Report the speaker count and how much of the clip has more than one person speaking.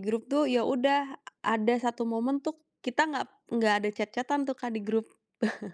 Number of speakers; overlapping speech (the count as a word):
one, no overlap